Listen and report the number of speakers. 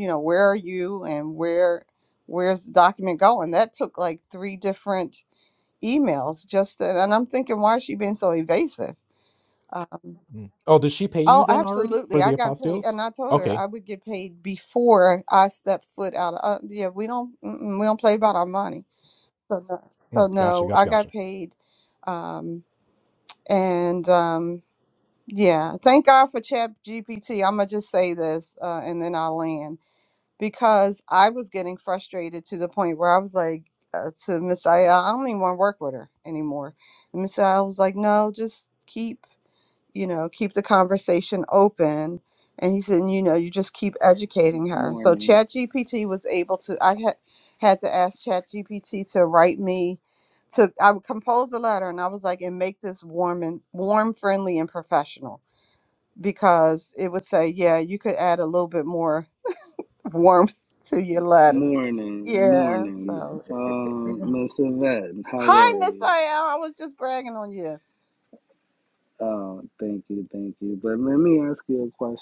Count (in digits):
3